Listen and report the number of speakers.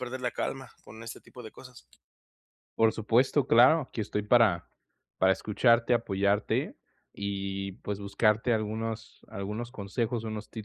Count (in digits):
2